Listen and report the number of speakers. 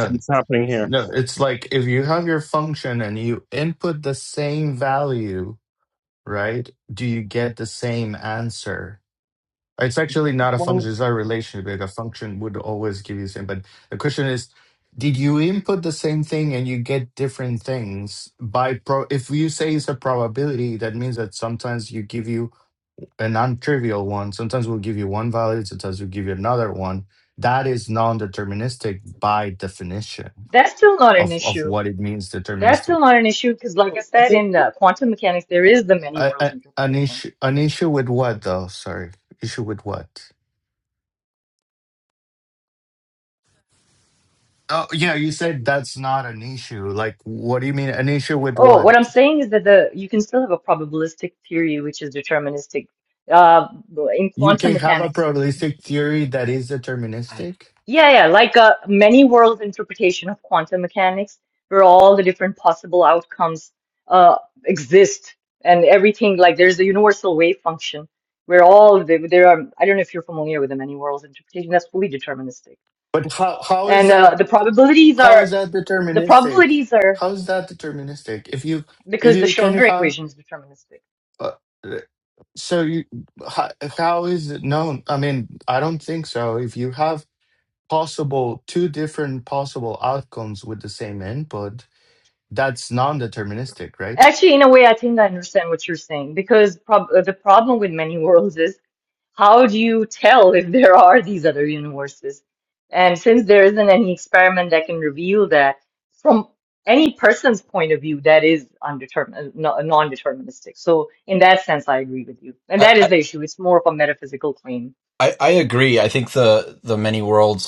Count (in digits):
4